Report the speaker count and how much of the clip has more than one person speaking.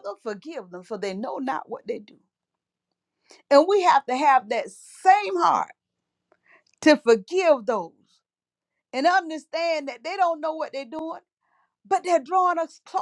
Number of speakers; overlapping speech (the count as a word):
one, no overlap